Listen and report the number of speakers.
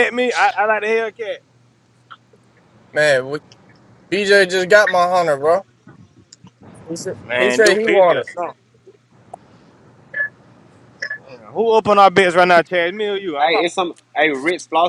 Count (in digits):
3